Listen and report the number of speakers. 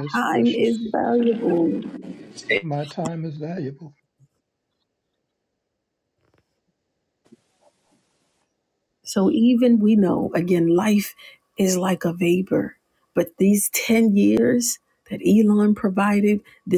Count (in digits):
2